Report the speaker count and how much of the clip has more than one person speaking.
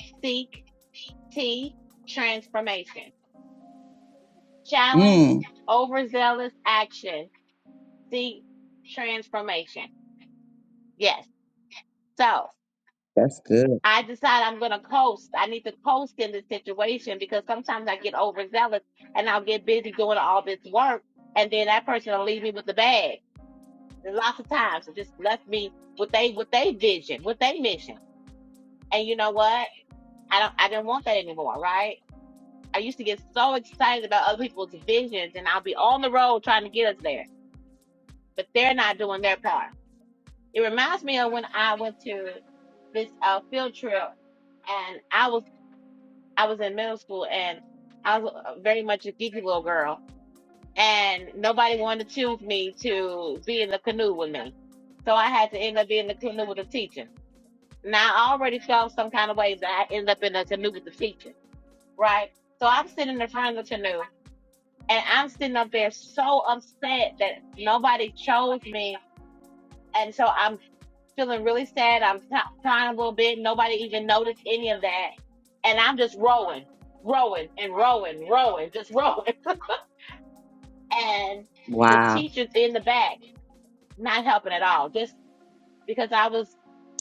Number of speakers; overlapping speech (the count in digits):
2, about 1%